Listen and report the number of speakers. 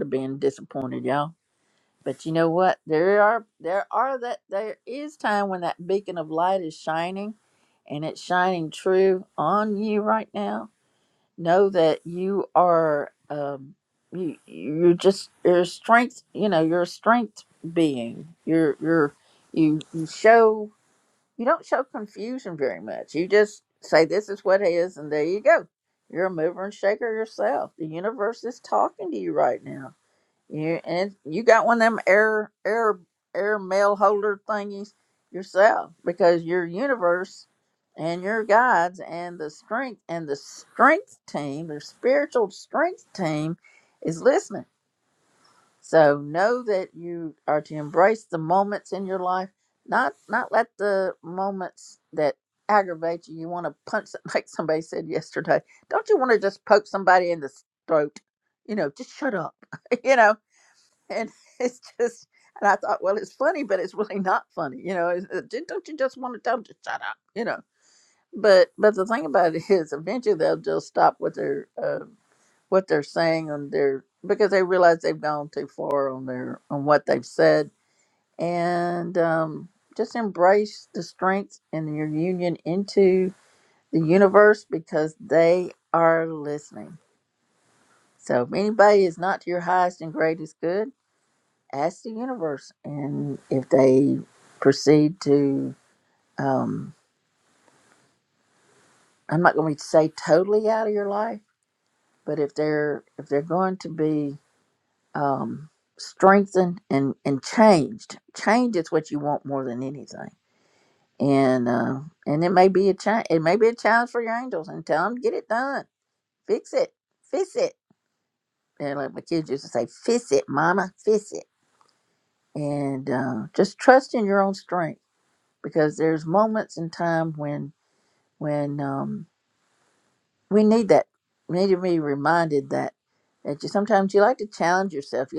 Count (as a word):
one